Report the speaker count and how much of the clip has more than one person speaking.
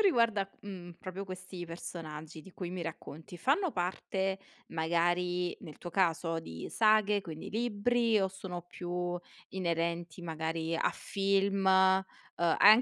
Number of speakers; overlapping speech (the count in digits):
1, no overlap